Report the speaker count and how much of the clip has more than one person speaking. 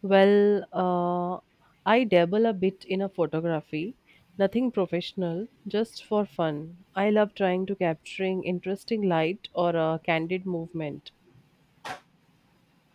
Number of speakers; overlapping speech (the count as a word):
one, no overlap